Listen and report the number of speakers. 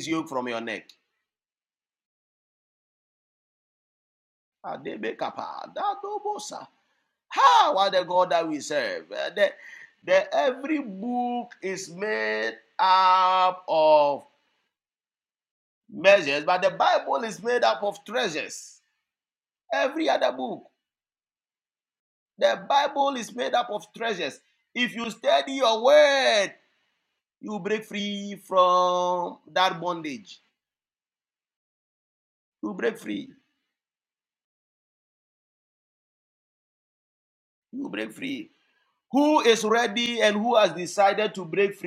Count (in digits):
1